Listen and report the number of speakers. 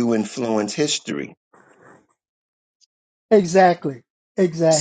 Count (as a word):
two